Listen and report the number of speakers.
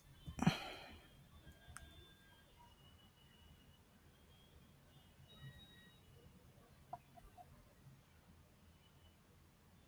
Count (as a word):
zero